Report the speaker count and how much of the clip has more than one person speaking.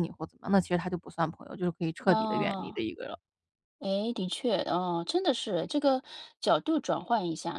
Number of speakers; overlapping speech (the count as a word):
two, about 10%